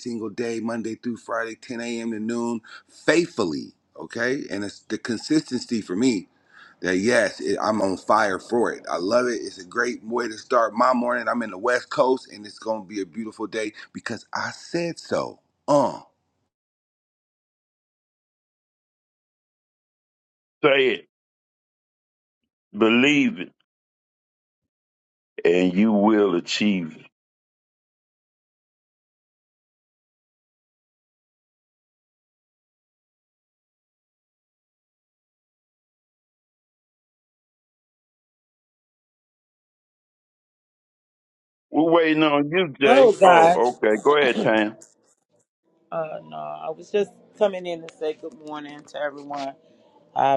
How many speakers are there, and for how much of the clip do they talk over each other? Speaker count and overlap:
3, about 2%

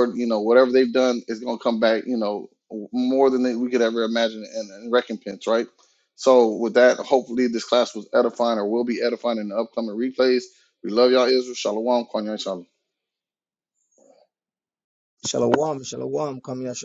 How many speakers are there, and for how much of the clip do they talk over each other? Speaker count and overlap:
2, no overlap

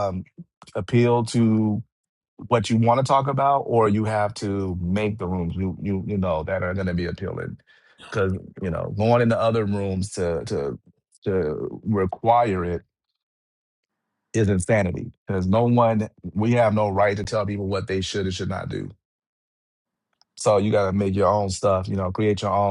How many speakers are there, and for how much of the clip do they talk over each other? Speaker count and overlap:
1, no overlap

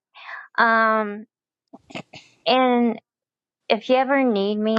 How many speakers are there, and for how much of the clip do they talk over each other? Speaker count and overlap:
1, no overlap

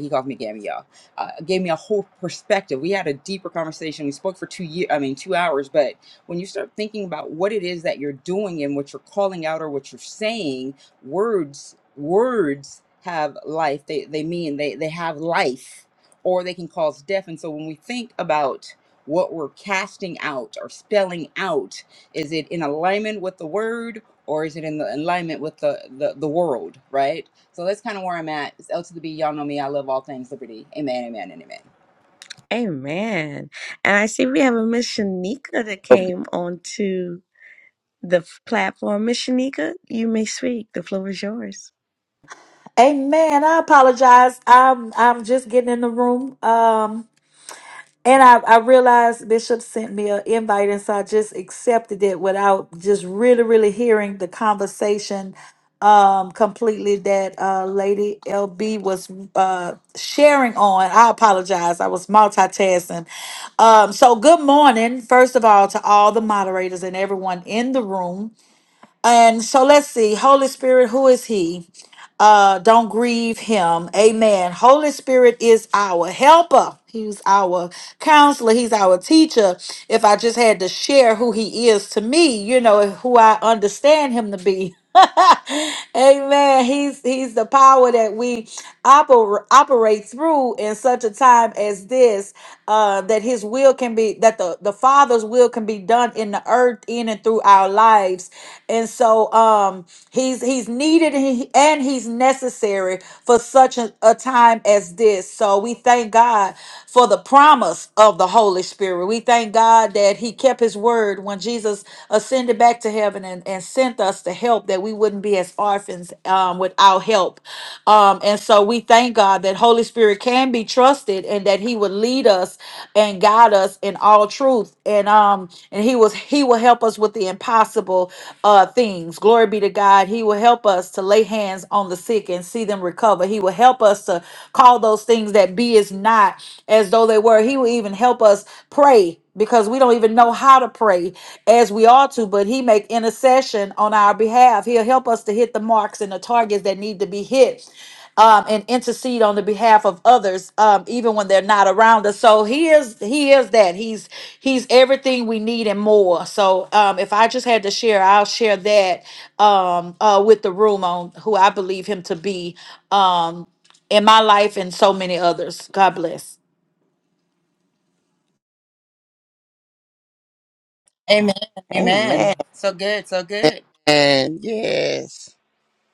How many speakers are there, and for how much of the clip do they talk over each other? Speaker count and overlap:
4, under 1%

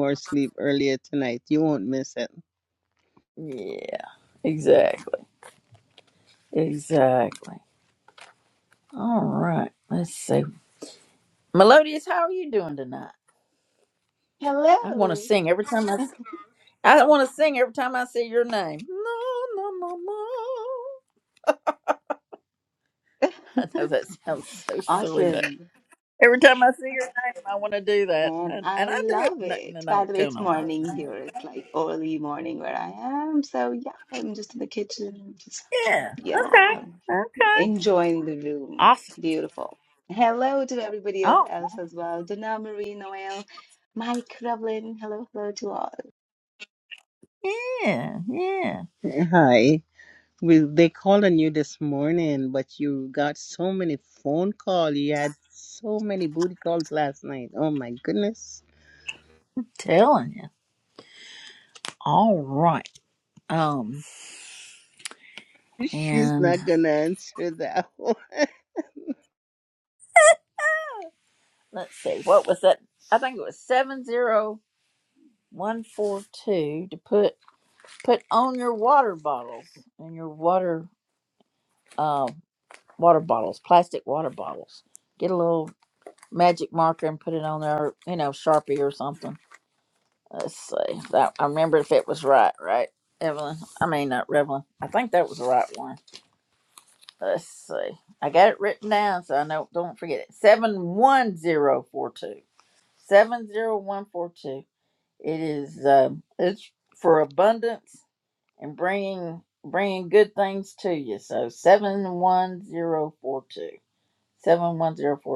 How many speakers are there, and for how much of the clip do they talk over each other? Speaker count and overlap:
3, about 5%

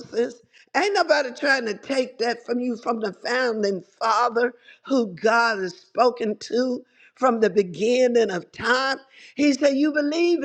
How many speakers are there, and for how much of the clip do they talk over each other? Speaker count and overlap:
1, no overlap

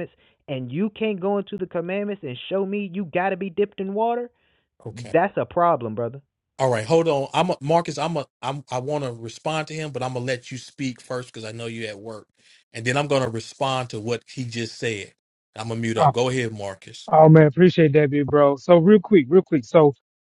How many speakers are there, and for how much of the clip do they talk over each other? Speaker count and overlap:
3, about 1%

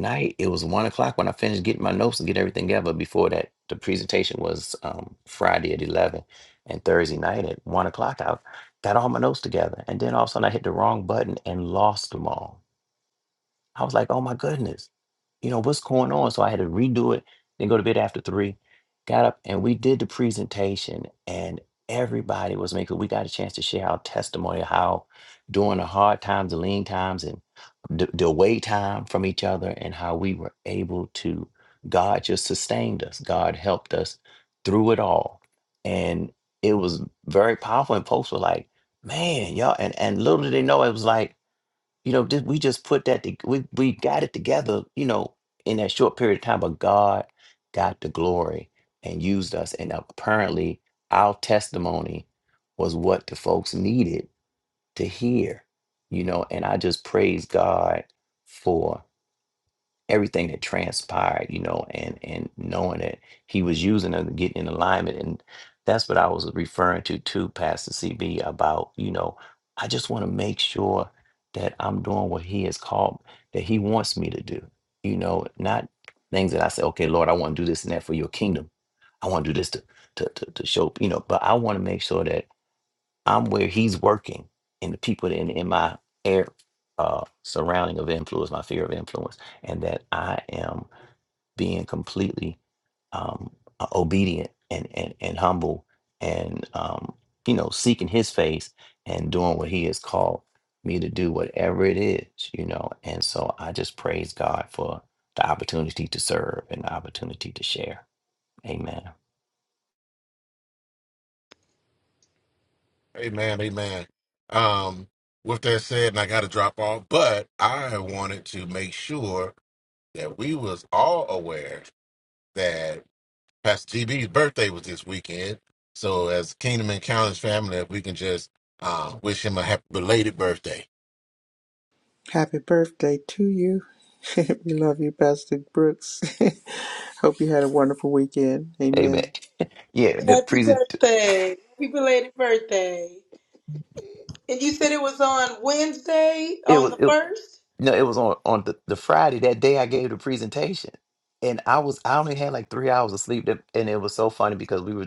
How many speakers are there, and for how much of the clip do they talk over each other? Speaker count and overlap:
4, about 1%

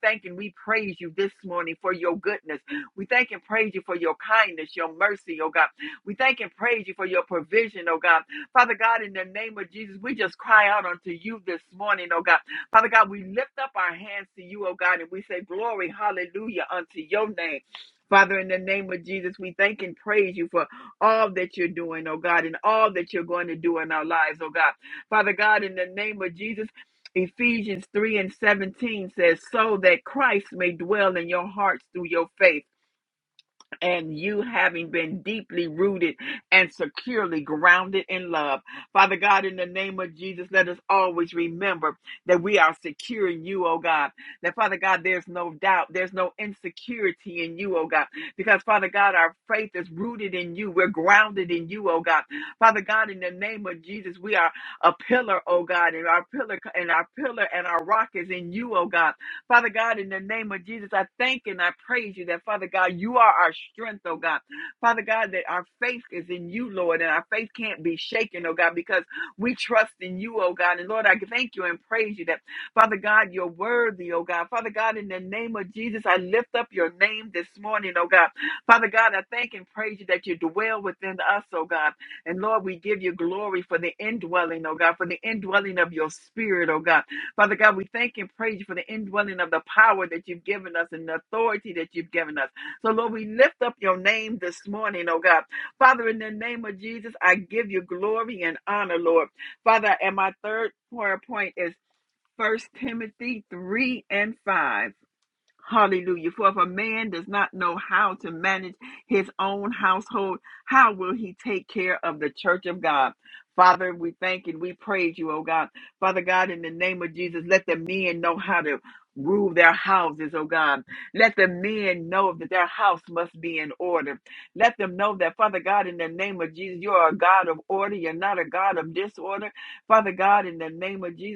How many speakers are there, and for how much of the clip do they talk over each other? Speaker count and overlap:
1, no overlap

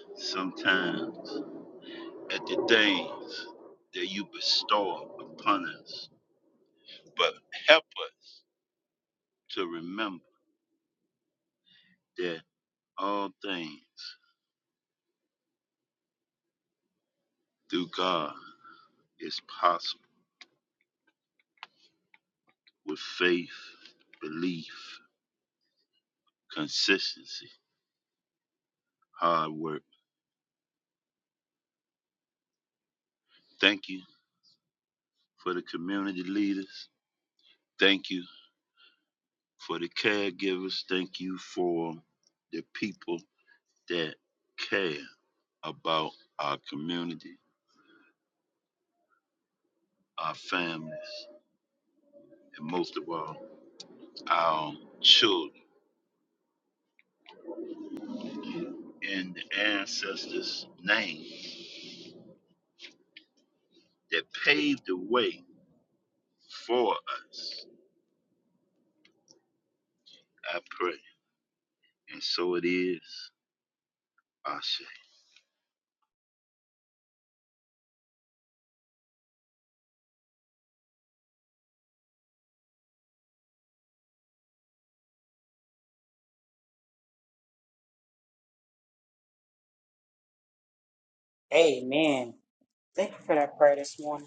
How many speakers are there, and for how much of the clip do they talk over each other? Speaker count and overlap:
2, no overlap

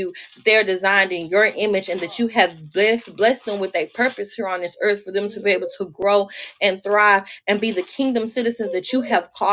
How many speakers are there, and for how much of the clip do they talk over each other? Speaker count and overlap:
1, no overlap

